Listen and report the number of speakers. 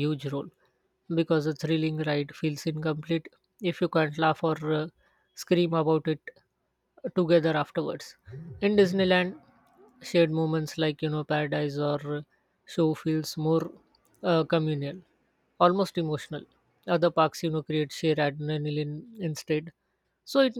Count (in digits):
1